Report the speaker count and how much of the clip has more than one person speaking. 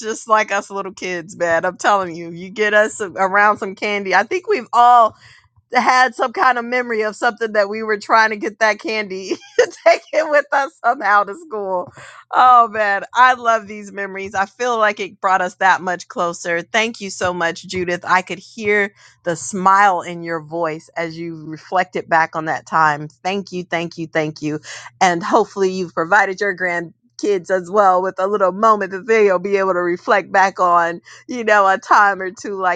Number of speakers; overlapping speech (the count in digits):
1, no overlap